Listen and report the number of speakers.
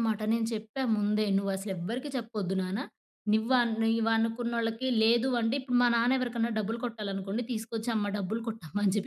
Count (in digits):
1